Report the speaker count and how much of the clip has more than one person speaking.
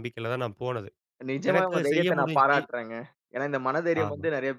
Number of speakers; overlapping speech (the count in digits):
2, about 32%